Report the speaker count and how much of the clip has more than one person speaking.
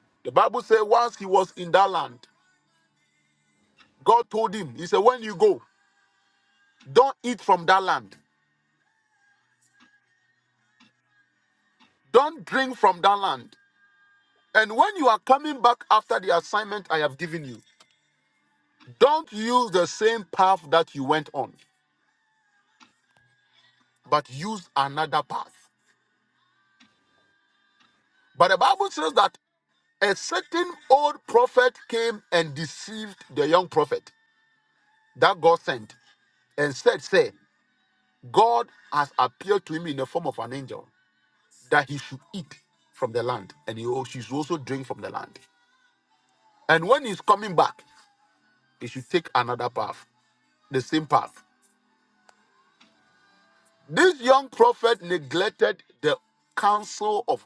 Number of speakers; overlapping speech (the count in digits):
1, no overlap